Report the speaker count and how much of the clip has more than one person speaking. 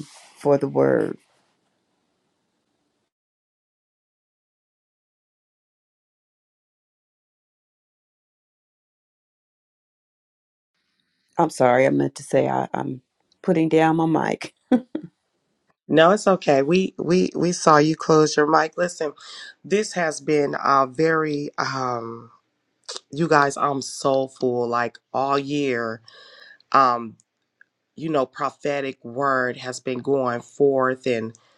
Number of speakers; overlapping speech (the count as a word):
two, no overlap